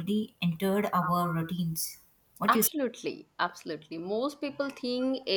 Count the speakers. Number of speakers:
two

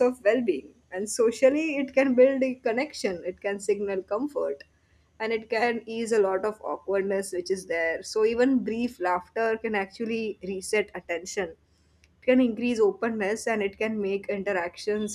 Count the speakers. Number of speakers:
one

